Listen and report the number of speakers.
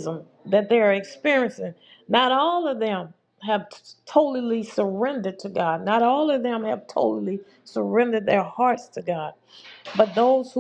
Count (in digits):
1